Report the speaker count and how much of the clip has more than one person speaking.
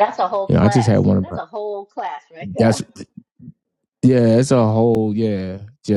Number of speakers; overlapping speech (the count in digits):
2, about 19%